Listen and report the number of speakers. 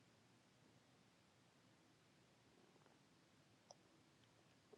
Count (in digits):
0